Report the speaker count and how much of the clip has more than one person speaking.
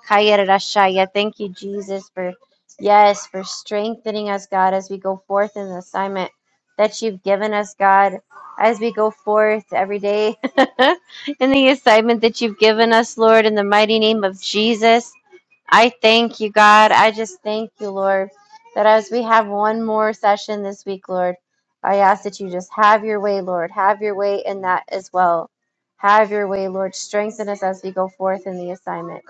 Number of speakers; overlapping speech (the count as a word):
one, no overlap